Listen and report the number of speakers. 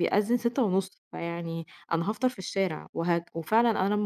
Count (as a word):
one